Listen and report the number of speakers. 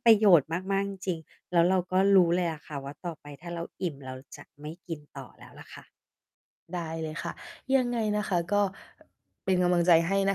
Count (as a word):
two